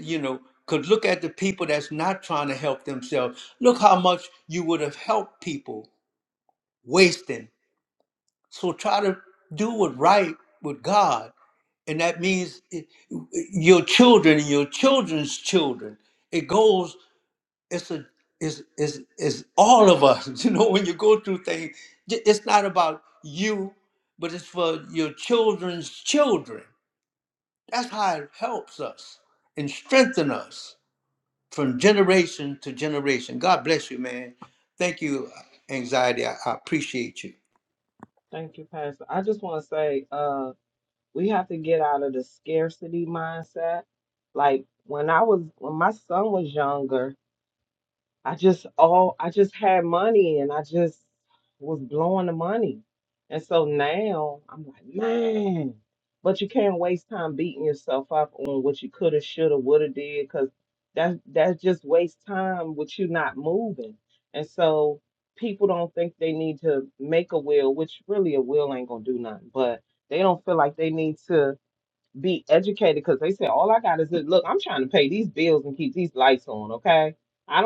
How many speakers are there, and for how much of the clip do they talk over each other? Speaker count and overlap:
two, no overlap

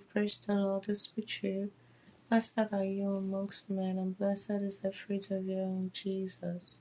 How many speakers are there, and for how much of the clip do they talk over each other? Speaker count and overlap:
one, no overlap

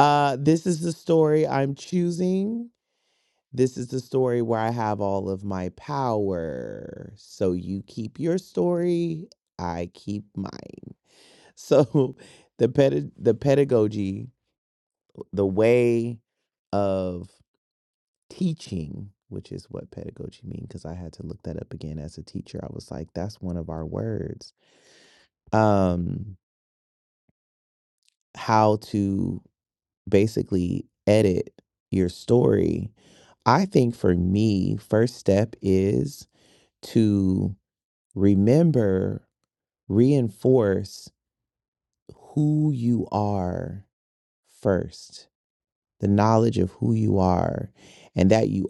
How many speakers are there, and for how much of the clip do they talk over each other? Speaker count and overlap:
one, no overlap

